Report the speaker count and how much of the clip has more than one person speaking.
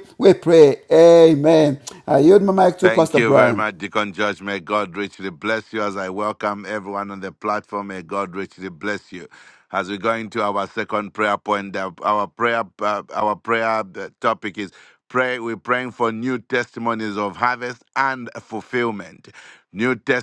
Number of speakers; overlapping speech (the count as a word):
two, about 4%